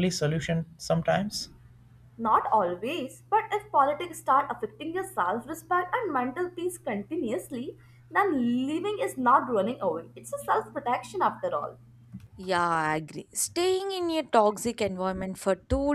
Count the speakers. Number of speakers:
3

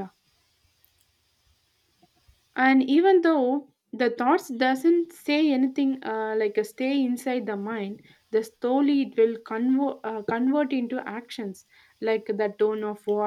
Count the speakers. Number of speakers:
1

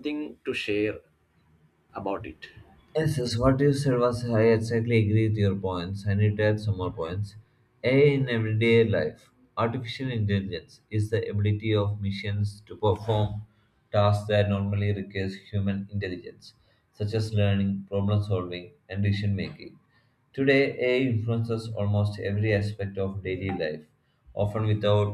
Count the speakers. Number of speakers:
2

